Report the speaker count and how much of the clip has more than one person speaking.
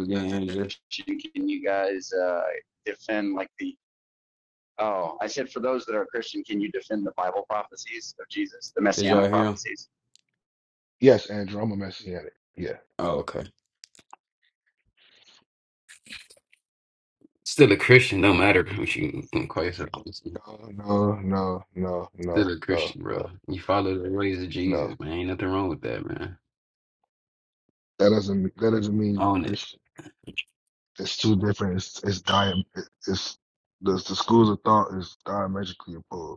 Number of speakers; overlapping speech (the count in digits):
3, about 6%